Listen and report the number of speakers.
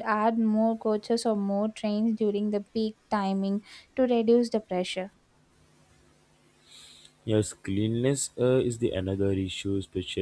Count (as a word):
two